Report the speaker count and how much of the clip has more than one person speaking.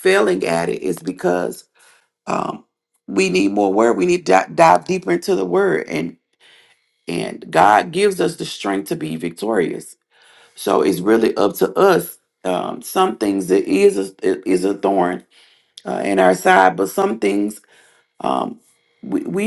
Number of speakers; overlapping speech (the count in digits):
1, no overlap